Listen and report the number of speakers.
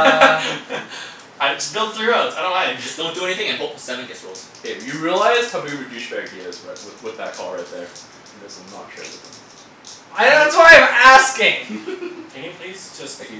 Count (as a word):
four